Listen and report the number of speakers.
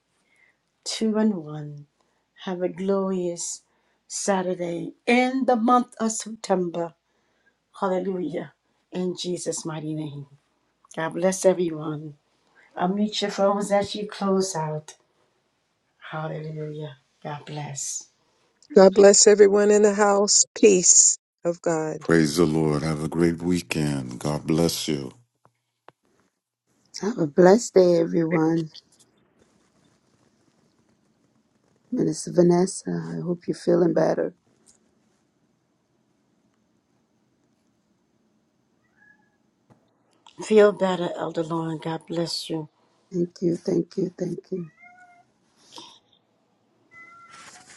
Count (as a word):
four